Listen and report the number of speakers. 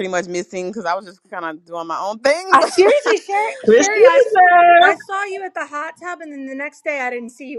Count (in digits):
3